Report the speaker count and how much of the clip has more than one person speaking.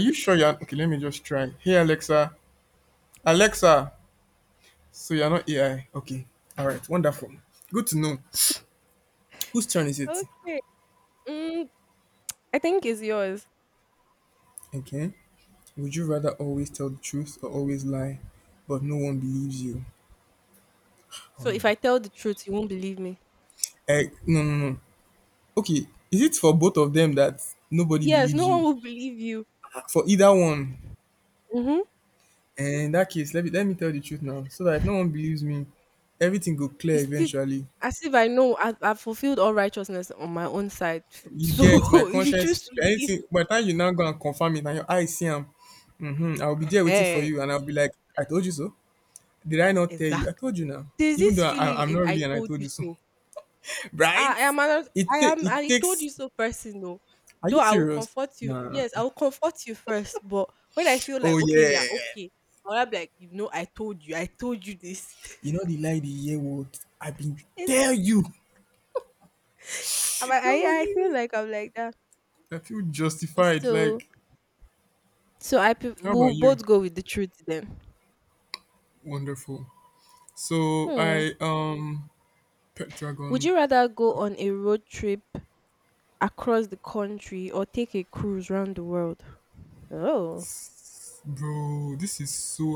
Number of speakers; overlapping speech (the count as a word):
two, about 11%